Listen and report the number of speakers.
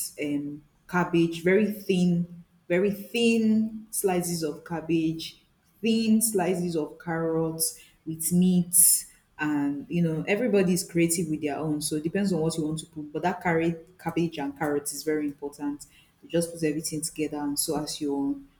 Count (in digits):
1